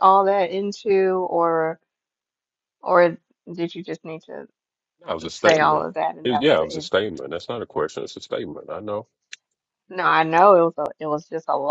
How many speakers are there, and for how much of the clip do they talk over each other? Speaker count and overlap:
two, about 10%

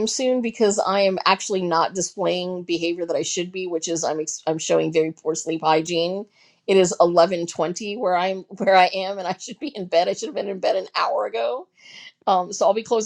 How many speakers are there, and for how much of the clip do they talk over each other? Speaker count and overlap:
one, no overlap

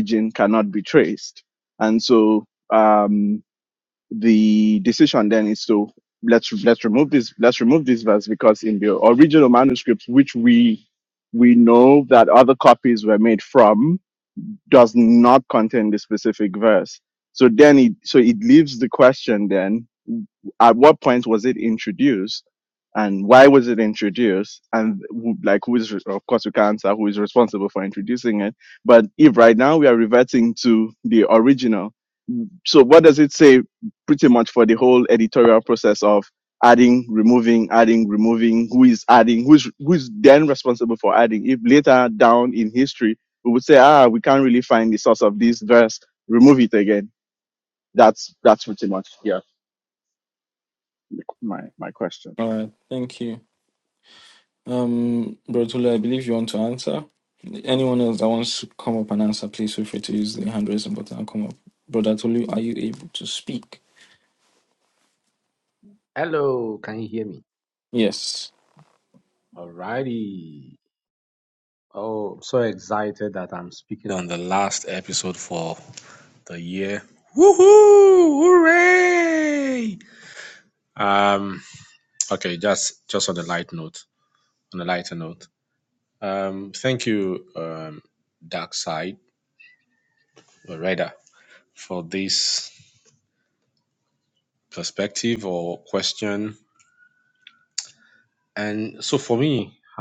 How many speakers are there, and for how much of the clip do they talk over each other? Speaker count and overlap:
three, no overlap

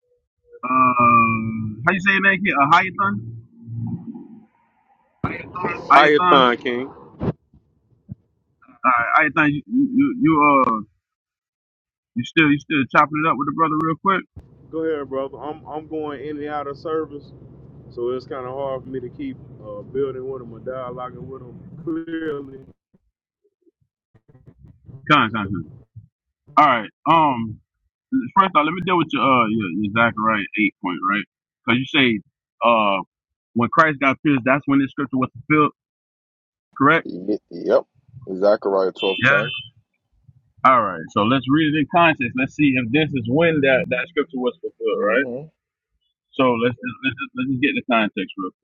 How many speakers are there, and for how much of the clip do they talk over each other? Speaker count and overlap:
three, about 2%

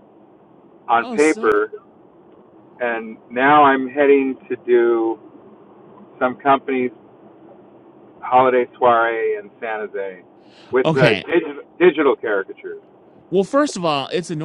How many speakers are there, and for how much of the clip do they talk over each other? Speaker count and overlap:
two, about 6%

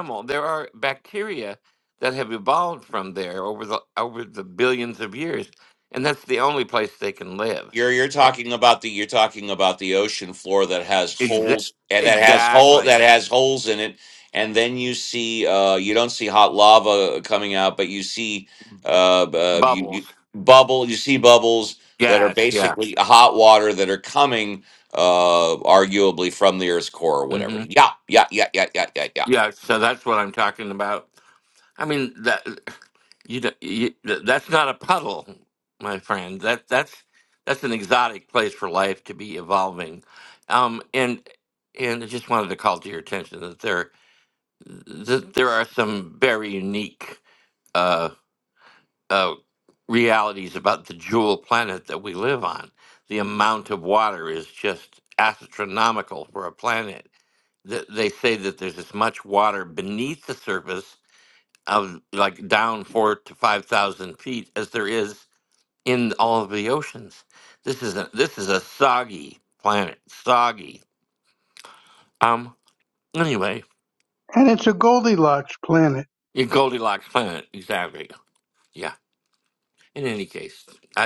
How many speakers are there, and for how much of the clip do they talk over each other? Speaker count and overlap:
three, about 4%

